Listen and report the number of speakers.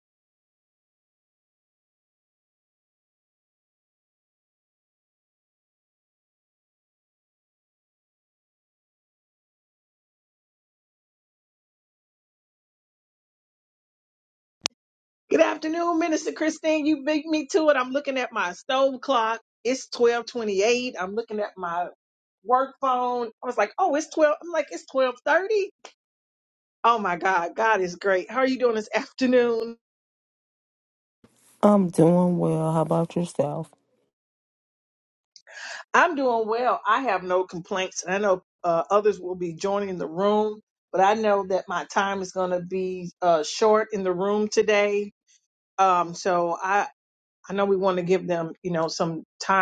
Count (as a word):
two